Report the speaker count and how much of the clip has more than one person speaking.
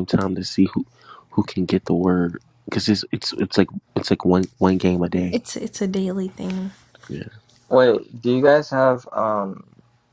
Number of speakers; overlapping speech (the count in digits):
3, under 1%